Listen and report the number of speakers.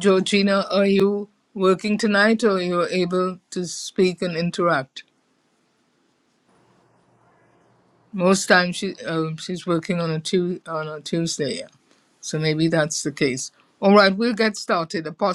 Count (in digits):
1